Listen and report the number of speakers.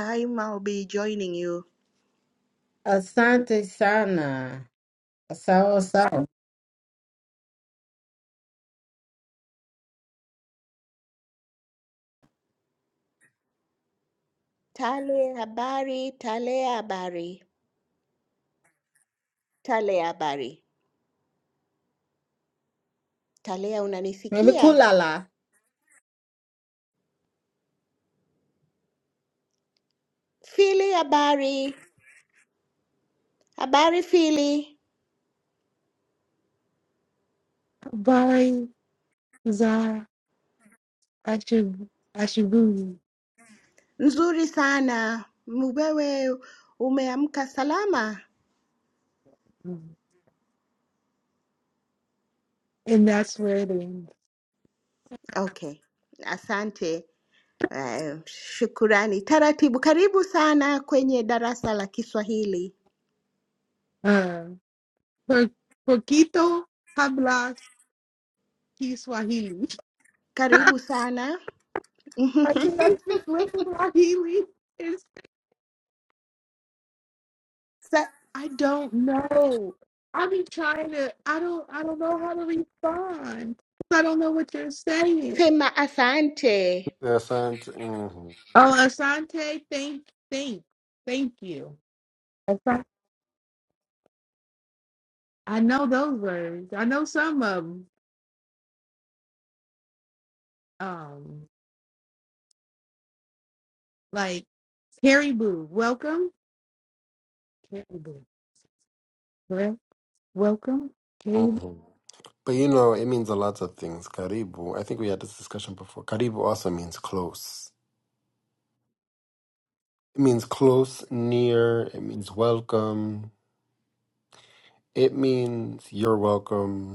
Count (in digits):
4